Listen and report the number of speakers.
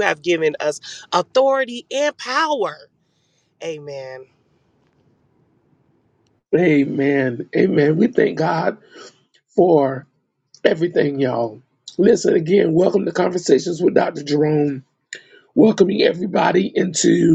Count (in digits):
2